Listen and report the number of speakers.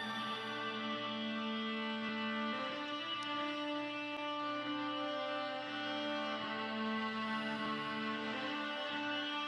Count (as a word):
zero